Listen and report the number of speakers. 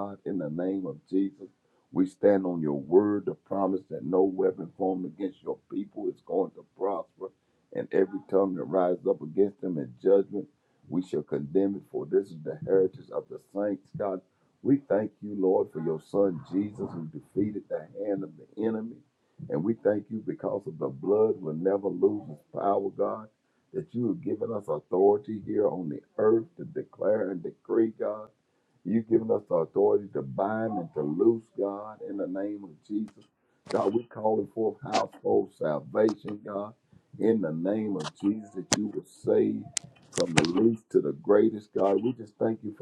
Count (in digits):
1